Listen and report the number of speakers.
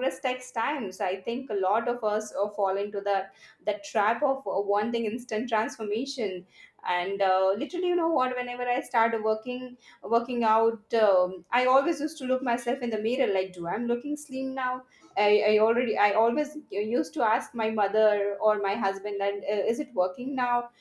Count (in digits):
1